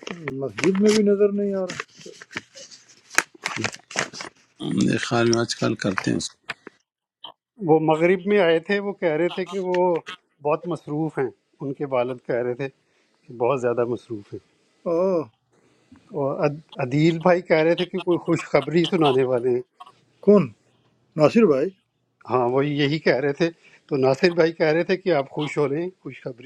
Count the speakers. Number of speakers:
three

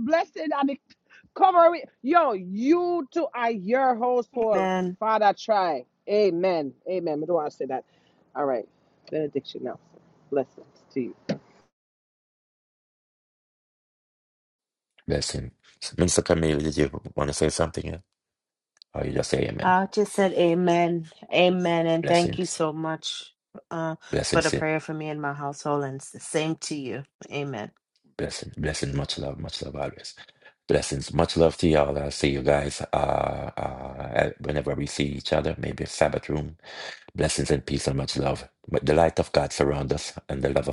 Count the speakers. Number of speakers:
three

